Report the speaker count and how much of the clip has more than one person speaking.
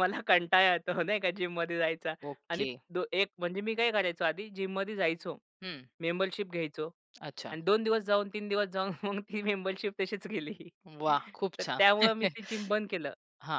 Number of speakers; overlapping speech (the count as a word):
two, about 4%